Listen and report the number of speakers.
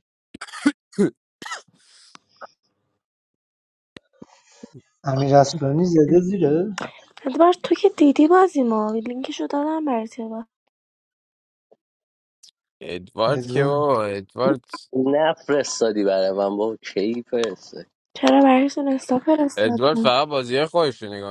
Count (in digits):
4